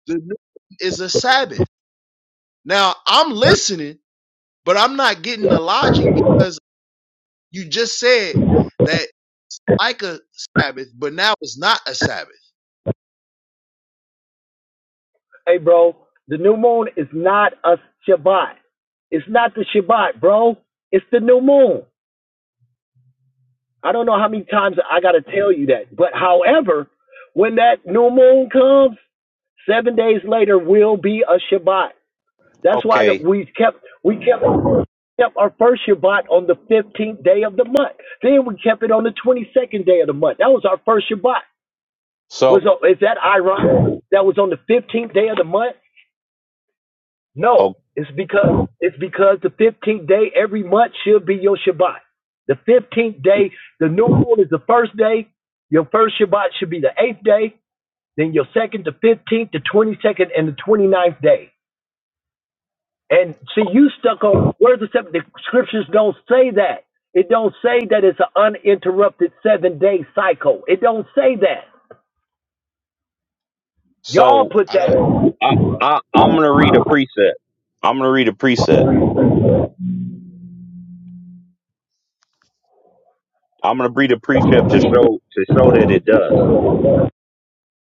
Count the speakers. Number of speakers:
3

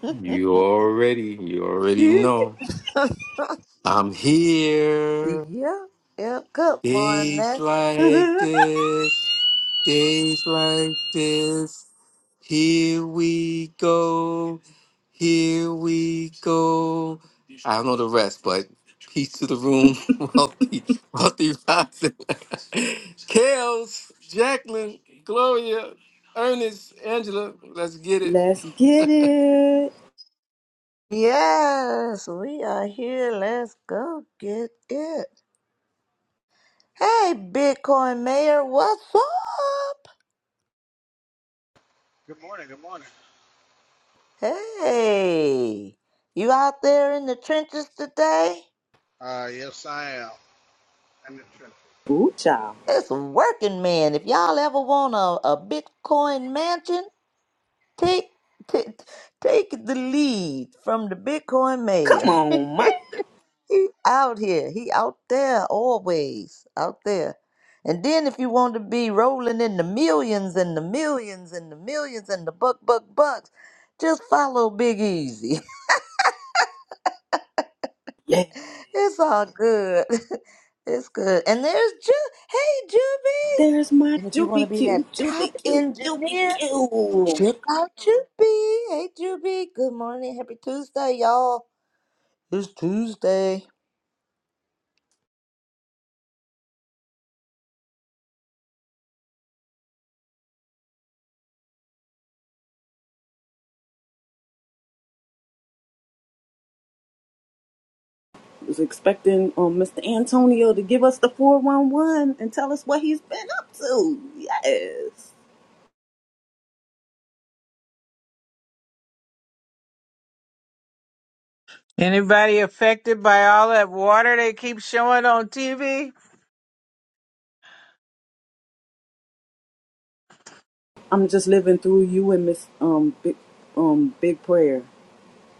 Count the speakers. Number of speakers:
5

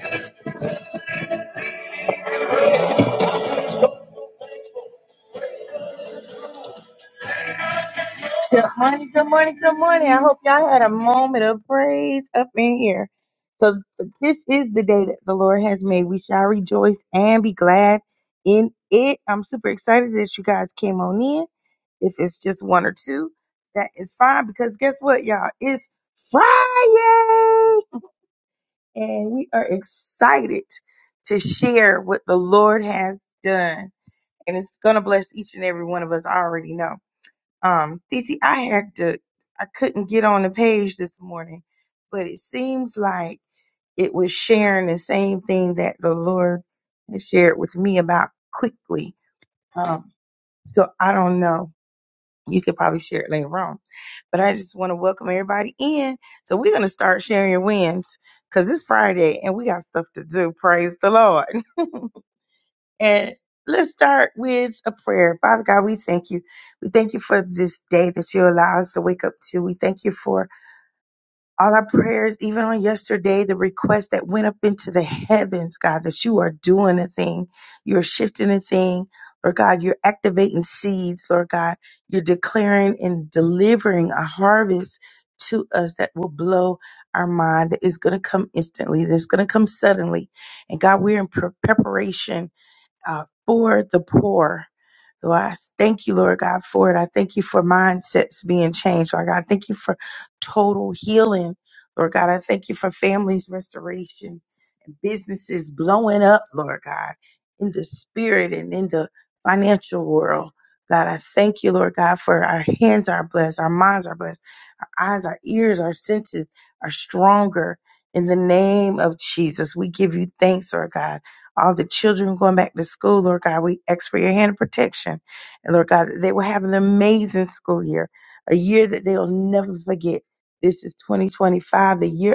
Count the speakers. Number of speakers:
1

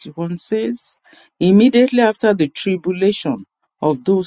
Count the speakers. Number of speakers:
1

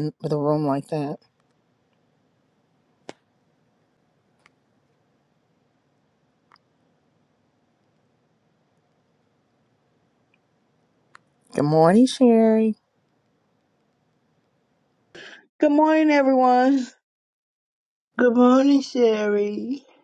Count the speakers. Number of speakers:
3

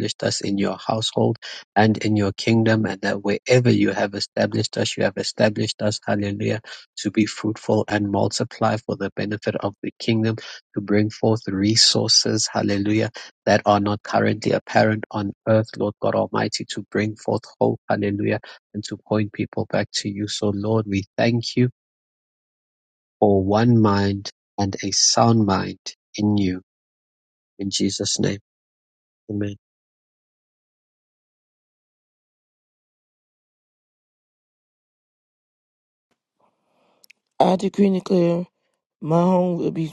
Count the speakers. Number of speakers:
2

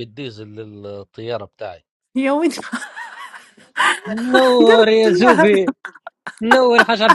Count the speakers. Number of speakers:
3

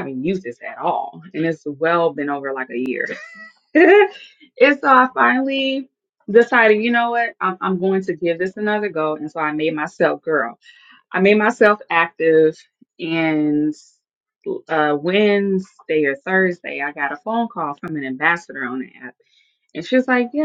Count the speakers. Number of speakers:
1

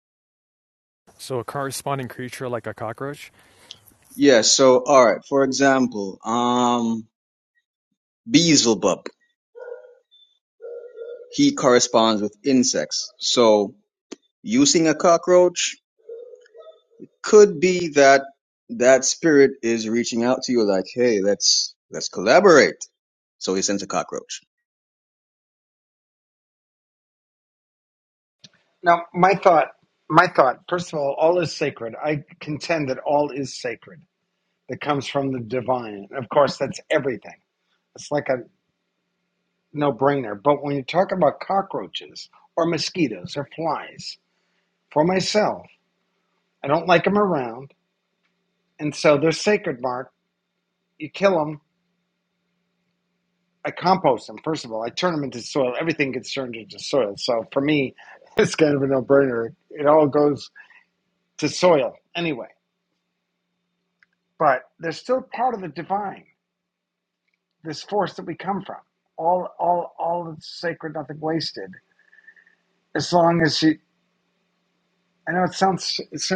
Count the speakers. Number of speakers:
3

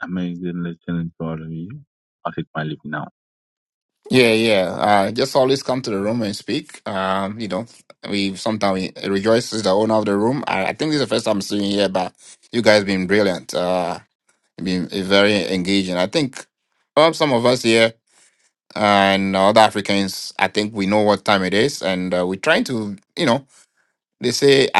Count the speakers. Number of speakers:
2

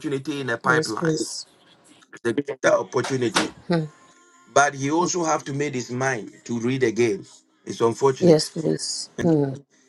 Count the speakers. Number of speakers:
2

